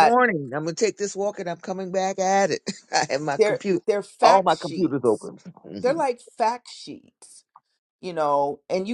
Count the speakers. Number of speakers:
2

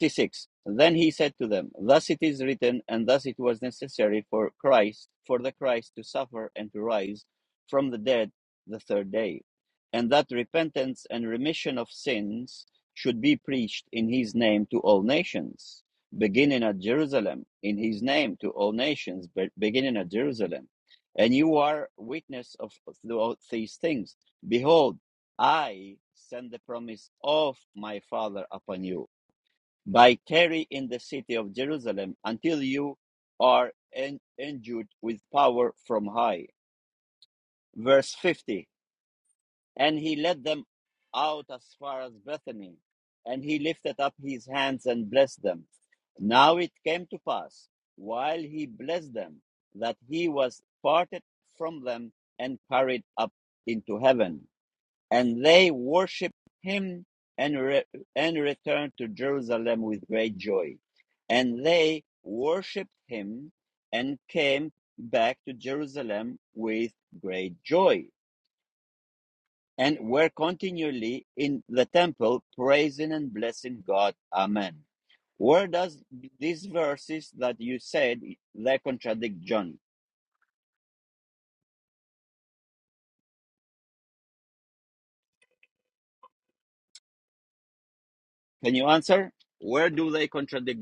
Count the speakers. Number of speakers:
1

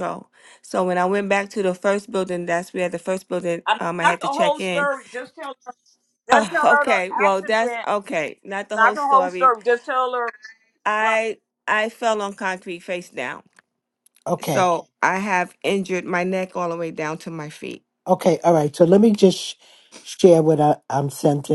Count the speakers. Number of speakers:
3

